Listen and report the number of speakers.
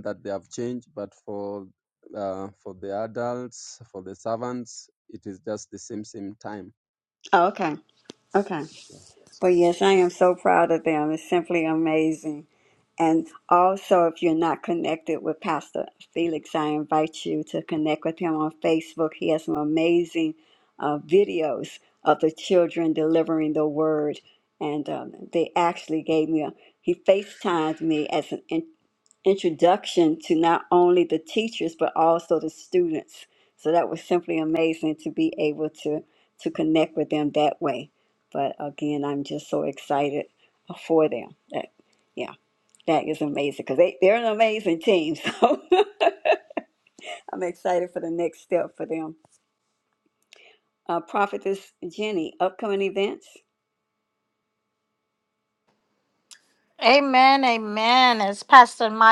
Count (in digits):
3